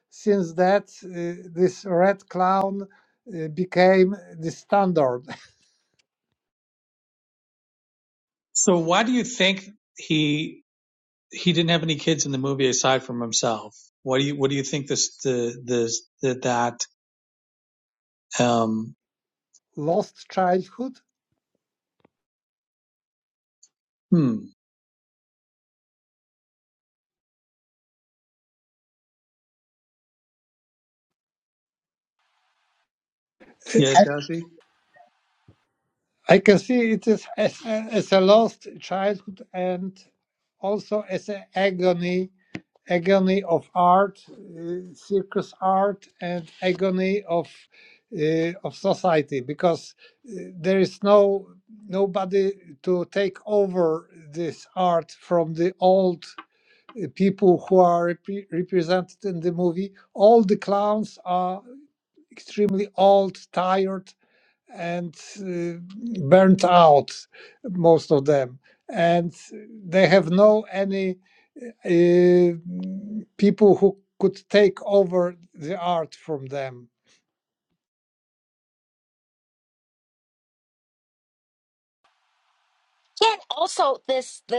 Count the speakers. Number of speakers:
3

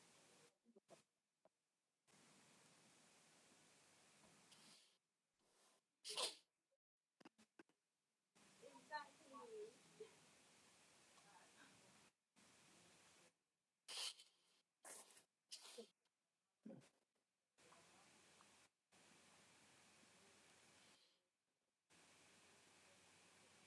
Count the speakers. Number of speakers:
0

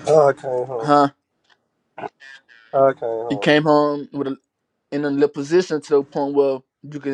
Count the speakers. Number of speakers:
2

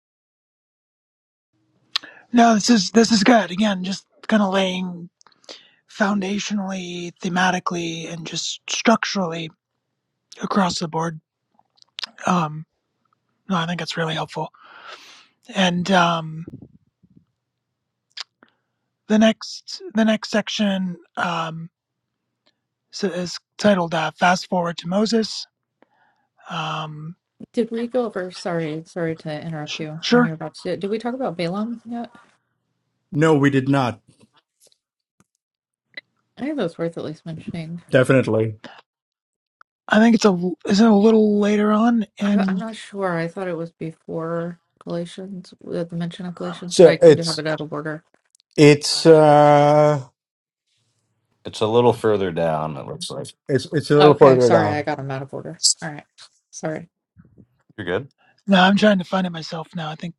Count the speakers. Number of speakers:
4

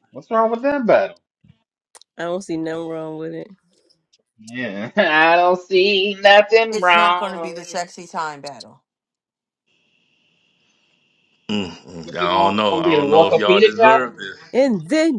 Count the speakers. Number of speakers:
4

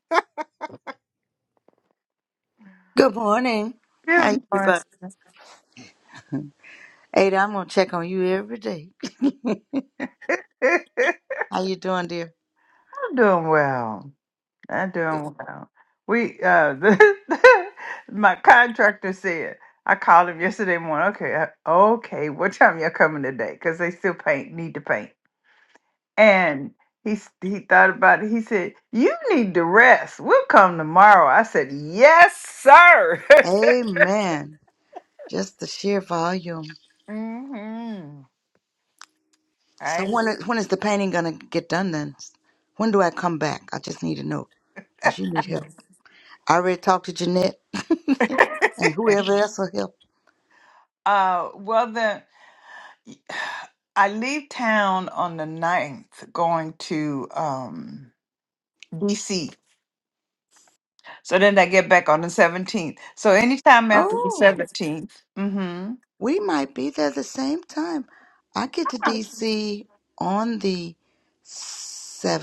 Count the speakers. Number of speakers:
2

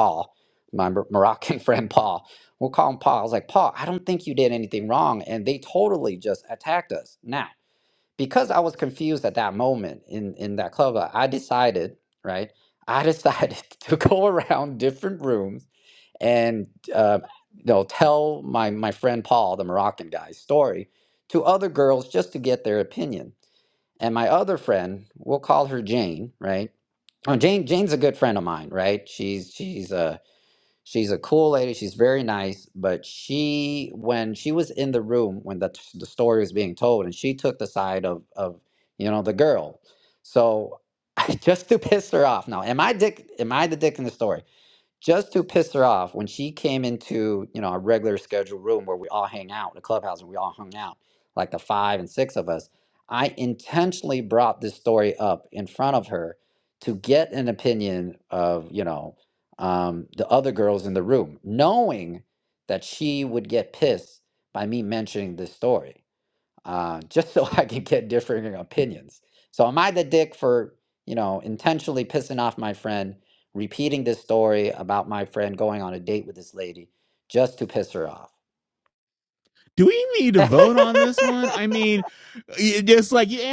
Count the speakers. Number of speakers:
2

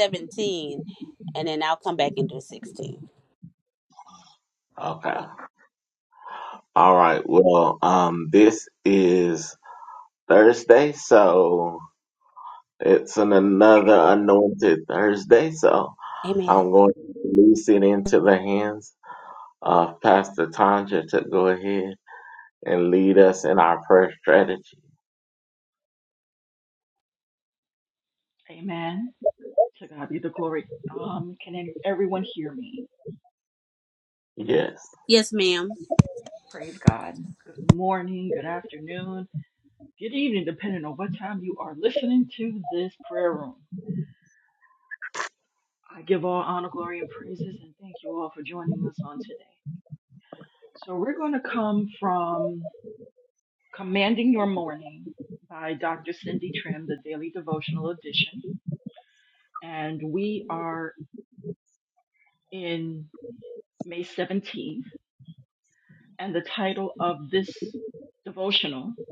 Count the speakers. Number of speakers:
3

